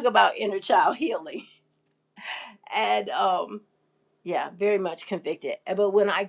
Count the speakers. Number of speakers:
1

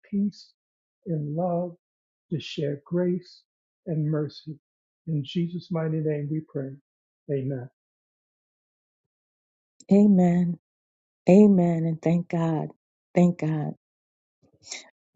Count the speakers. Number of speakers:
2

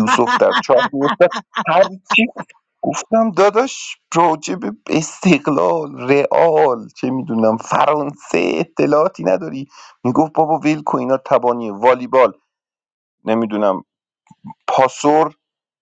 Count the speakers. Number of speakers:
1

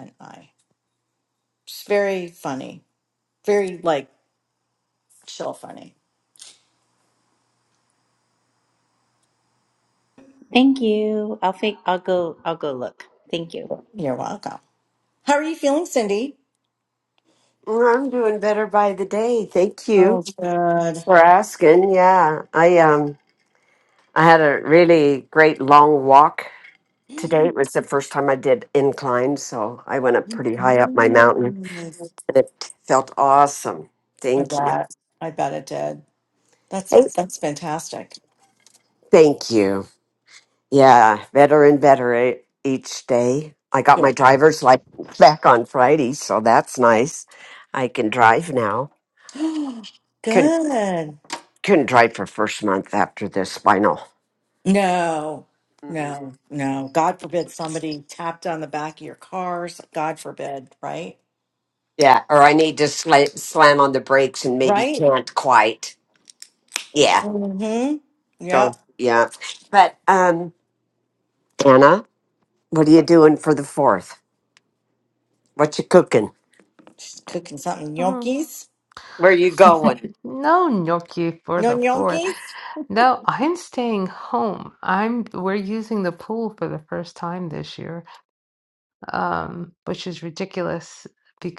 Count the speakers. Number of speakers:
4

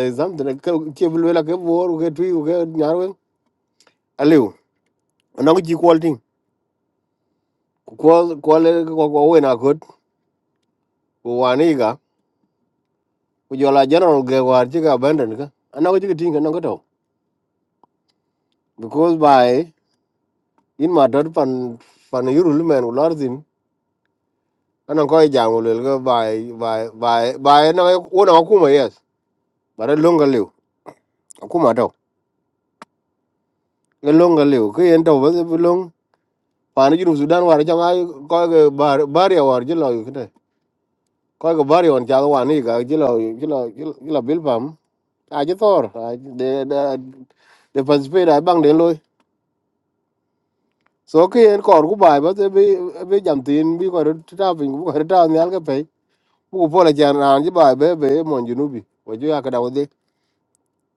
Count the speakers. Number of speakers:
1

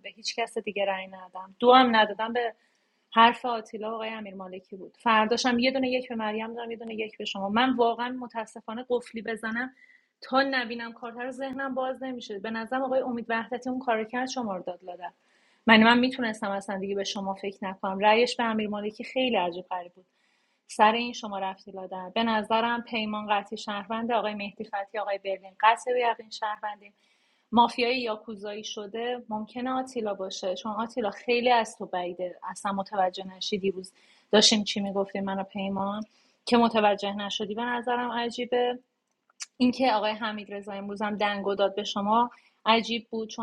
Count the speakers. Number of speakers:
1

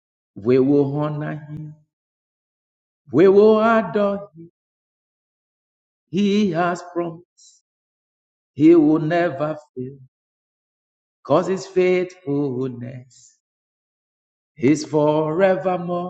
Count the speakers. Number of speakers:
1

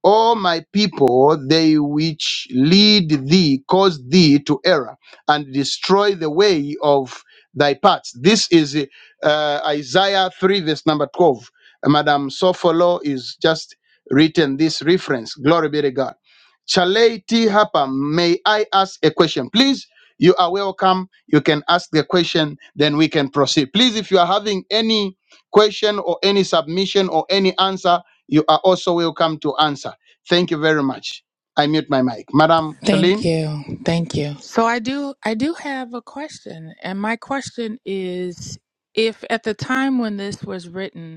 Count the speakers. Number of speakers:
2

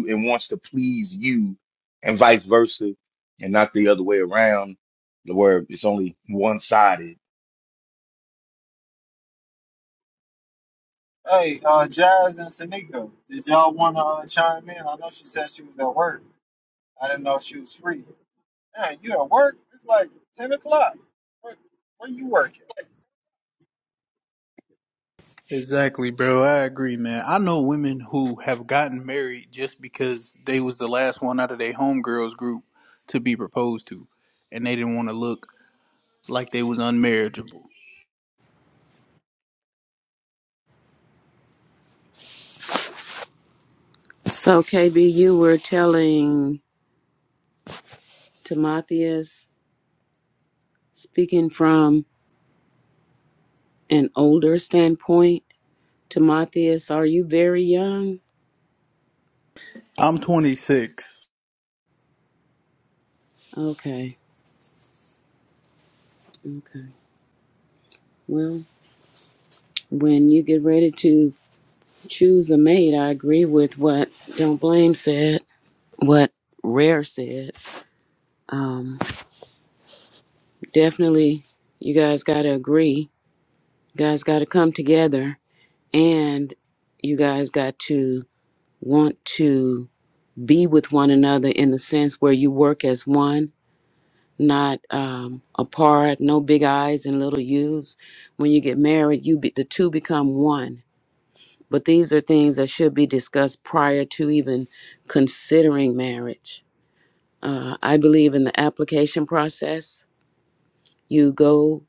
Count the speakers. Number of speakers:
4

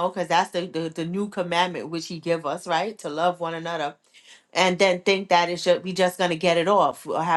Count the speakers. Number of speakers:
1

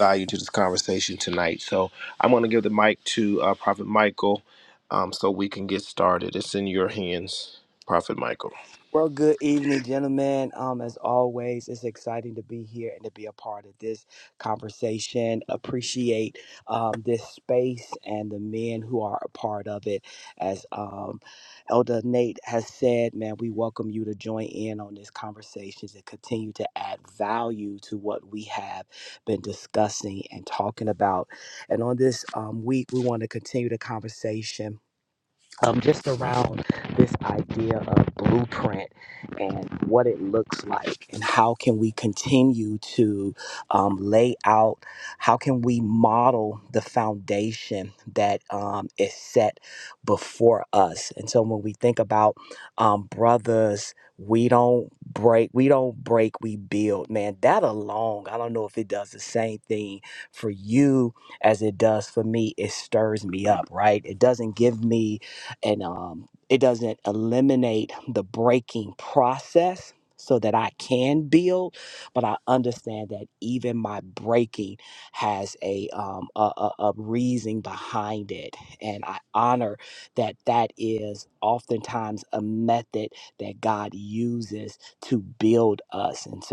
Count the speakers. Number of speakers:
2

